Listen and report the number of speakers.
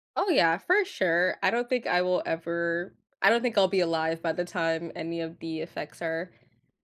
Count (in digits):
1